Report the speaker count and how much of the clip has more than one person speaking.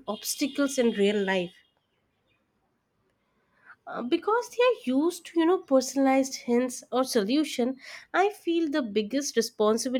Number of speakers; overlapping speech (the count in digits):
1, no overlap